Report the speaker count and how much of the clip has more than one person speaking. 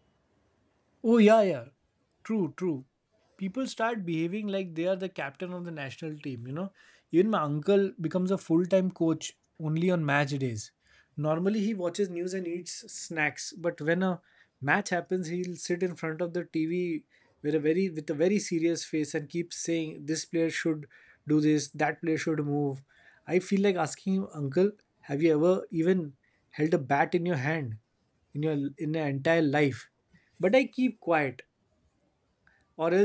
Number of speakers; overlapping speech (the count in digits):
1, no overlap